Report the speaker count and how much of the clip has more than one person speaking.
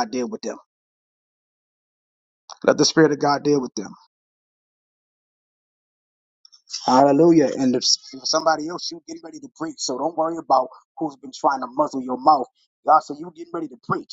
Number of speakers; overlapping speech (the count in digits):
1, no overlap